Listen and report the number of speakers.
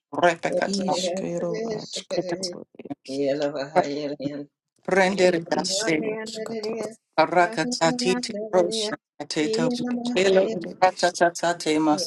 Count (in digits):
3